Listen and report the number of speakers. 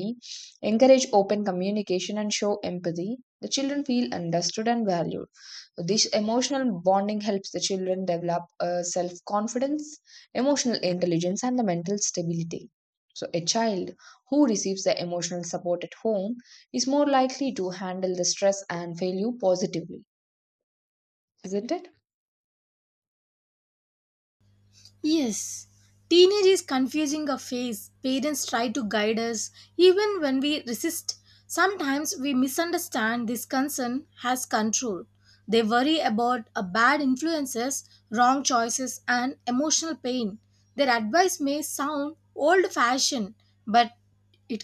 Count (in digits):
2